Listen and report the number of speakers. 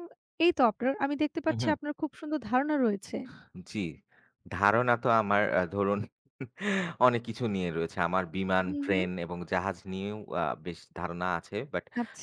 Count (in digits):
2